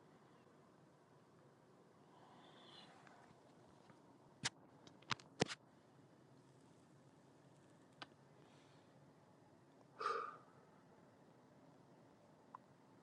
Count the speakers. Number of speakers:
0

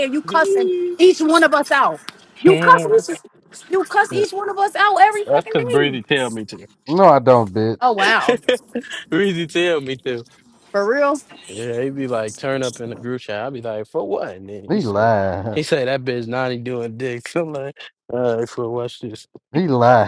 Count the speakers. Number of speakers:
3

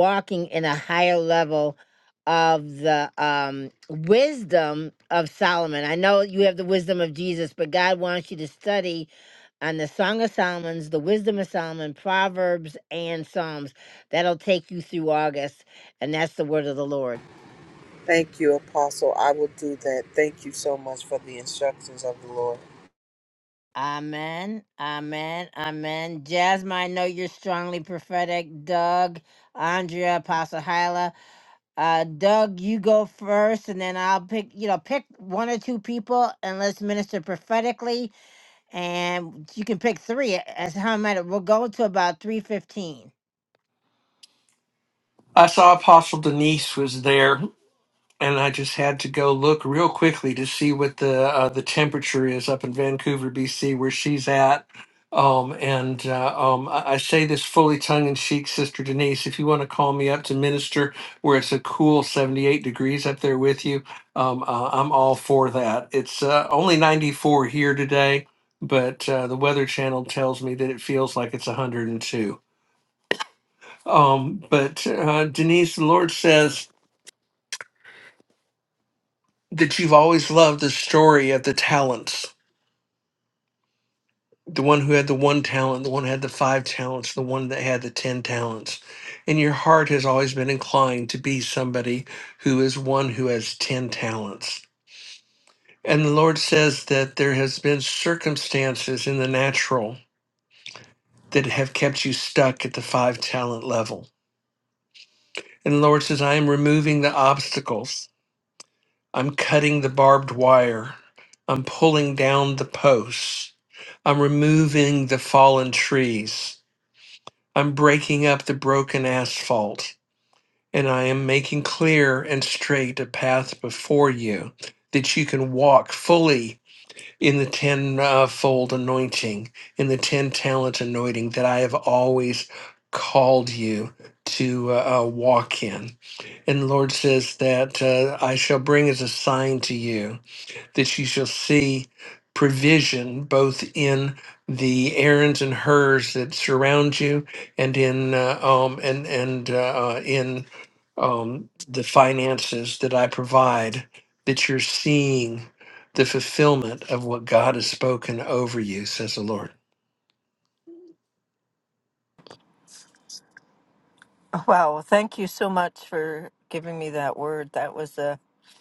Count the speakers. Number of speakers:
4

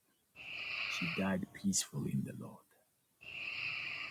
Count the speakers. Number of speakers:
1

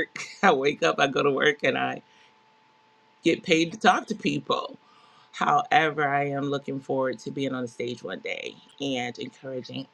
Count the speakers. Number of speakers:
1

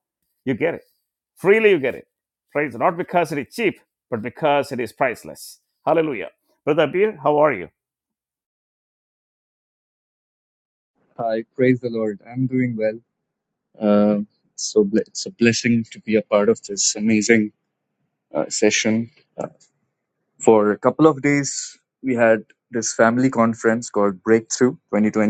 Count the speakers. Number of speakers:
2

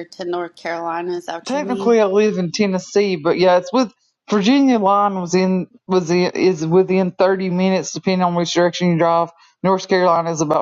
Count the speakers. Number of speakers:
2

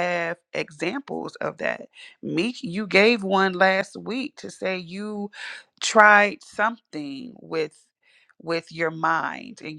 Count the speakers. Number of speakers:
1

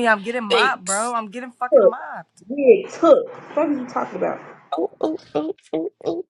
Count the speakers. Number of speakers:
3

